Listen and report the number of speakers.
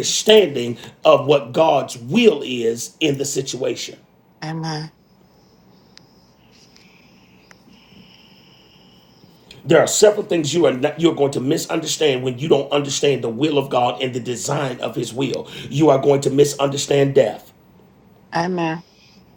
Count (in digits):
2